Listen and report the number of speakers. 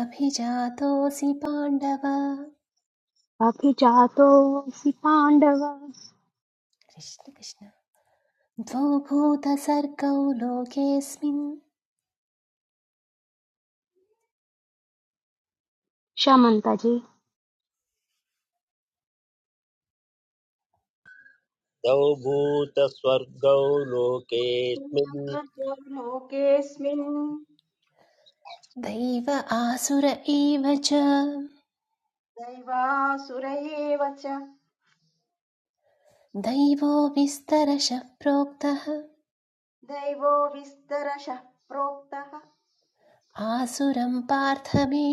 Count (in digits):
4